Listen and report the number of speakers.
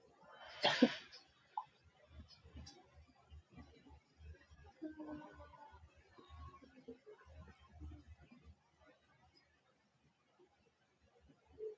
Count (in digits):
0